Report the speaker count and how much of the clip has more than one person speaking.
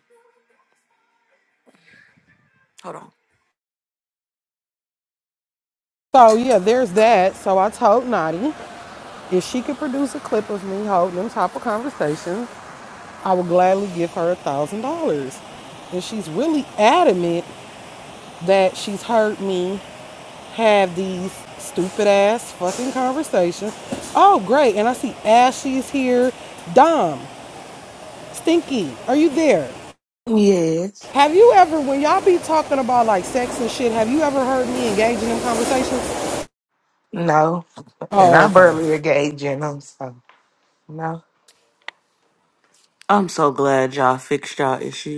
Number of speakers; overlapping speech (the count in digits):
3, about 1%